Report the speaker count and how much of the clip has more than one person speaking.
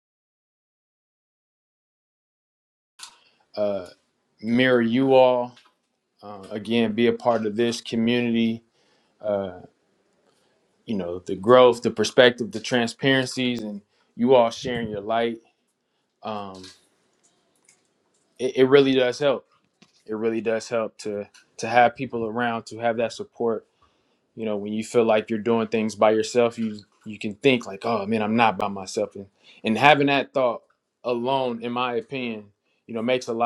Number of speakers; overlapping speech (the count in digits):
1, no overlap